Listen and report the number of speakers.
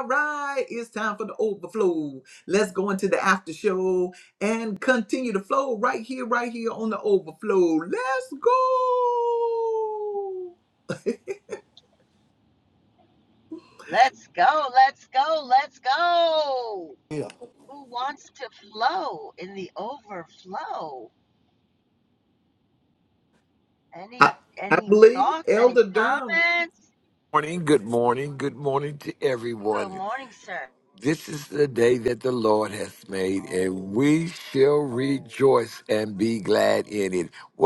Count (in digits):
3